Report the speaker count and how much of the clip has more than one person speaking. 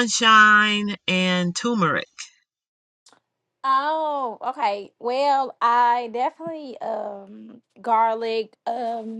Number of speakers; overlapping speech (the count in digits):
2, no overlap